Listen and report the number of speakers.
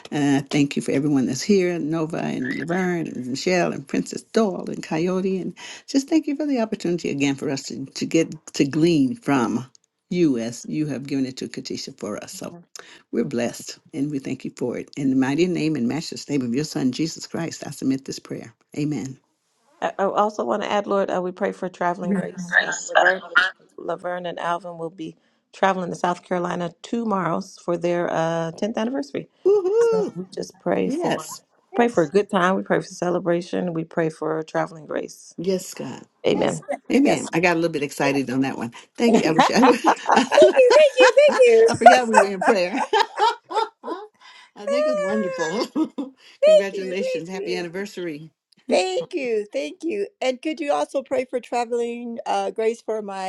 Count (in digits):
3